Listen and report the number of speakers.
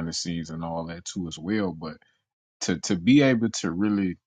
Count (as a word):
one